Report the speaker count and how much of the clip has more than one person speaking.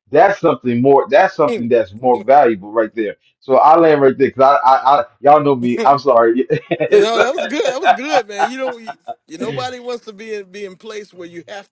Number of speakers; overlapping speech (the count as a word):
two, about 3%